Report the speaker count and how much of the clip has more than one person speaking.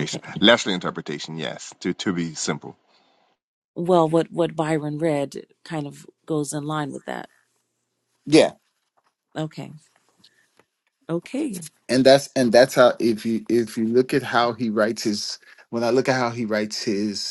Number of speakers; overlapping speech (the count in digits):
3, about 1%